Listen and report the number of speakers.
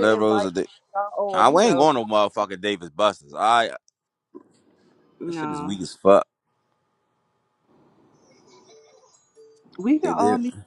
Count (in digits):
2